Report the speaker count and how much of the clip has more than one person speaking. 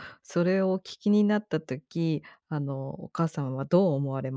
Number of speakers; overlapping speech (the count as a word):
one, no overlap